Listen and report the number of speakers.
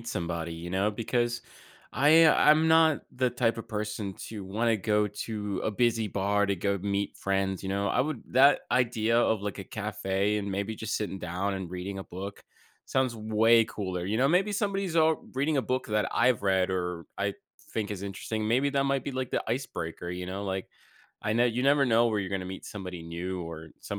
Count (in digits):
1